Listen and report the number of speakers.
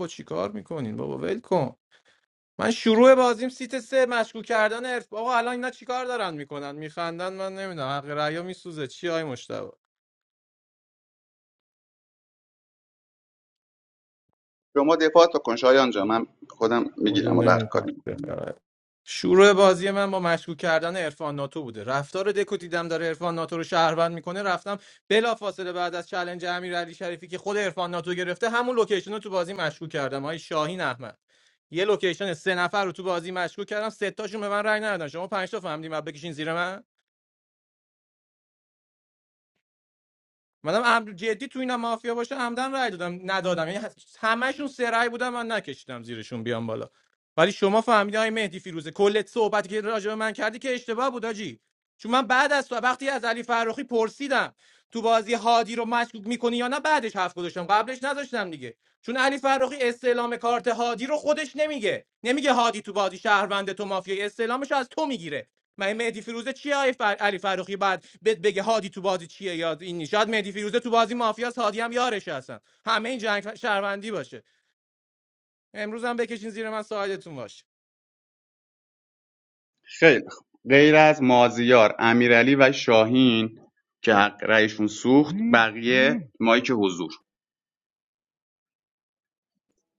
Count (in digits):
2